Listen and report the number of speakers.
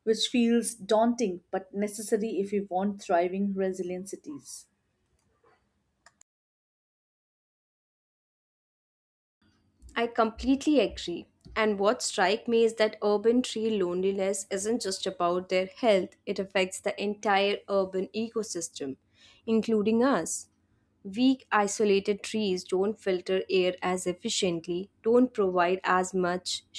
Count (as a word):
two